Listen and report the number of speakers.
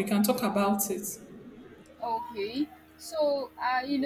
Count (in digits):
2